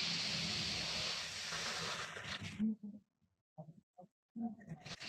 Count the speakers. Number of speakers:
0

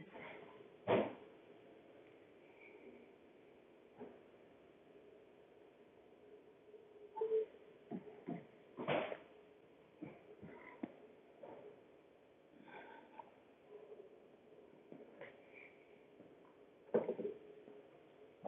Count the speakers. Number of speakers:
0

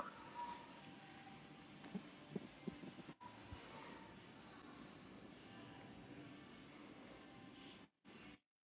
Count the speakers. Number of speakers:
0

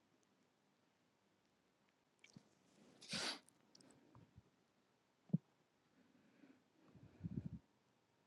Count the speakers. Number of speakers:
0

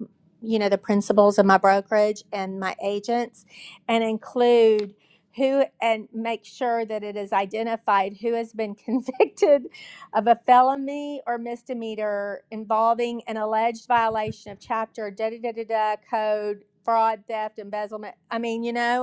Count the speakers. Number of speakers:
1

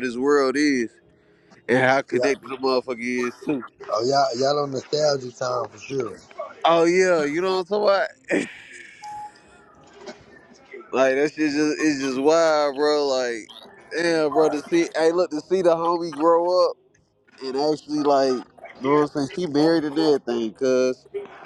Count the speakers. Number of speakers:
2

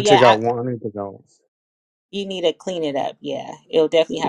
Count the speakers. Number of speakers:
2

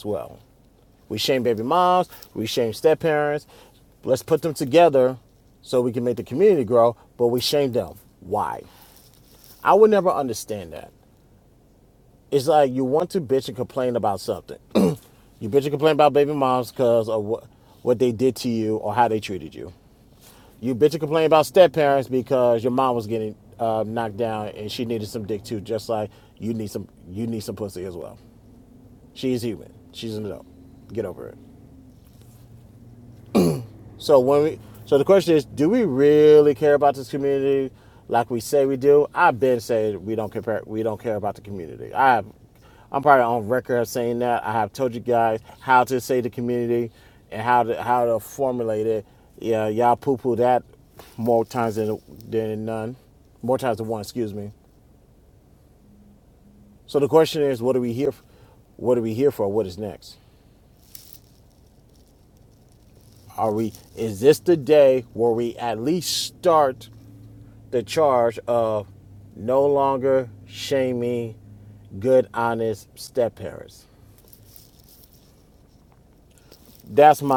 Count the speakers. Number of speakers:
1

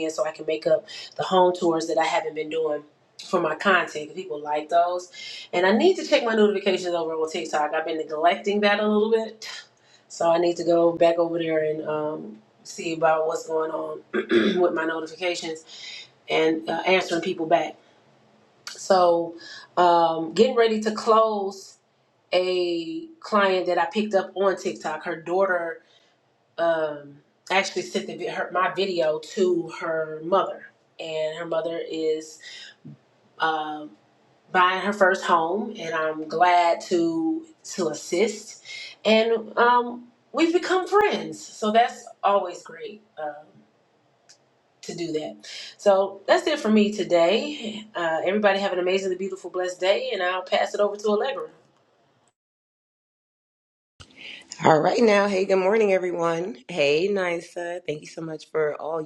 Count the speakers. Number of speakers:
2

